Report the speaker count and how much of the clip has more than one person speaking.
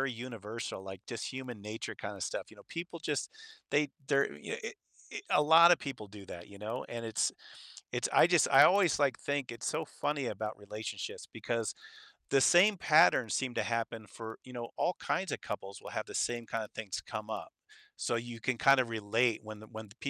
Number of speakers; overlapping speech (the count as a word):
one, no overlap